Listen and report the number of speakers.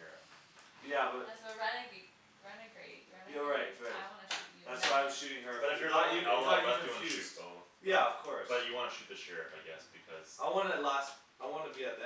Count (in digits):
3